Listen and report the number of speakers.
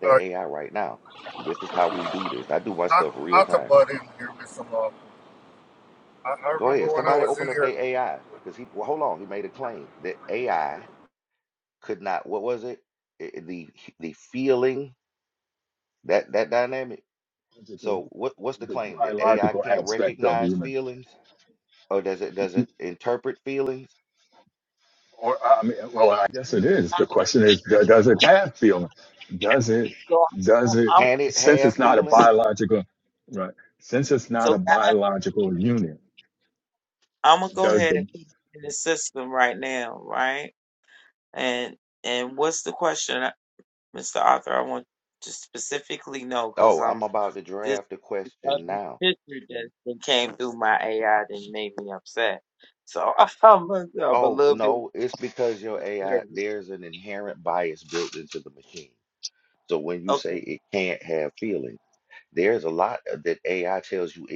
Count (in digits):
4